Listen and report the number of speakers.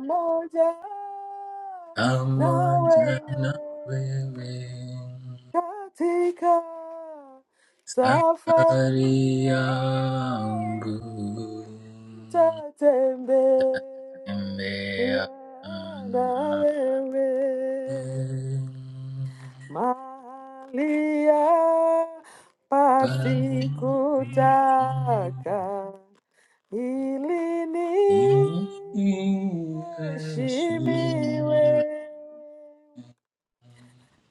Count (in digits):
2